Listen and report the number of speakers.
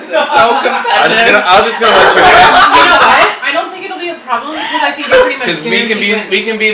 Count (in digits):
3